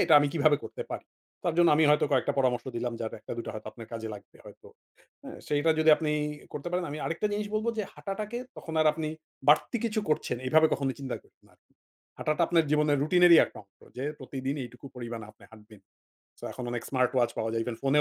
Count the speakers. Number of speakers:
1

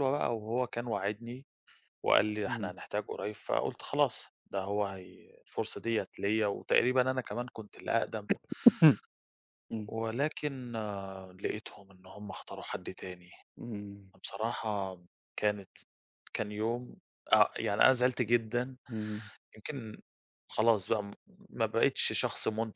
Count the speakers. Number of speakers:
2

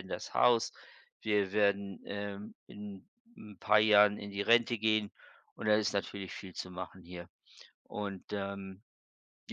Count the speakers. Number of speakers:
1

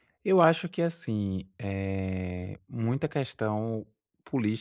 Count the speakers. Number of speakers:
1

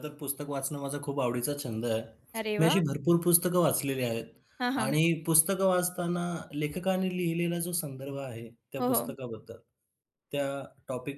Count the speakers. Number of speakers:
2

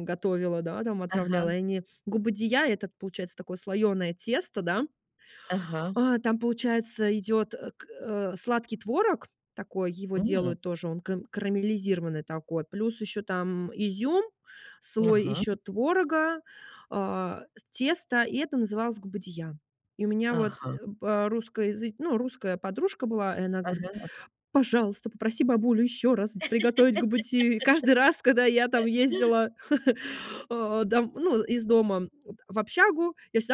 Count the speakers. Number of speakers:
2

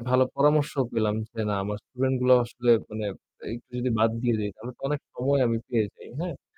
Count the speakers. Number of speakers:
1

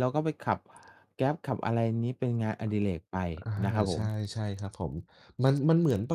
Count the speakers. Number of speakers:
2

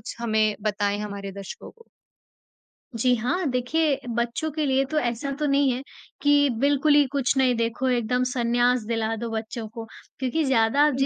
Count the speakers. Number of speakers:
2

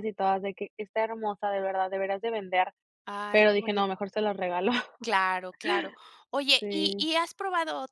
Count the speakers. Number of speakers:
2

